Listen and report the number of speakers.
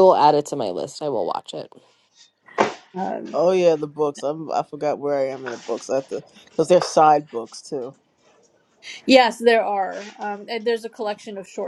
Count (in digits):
3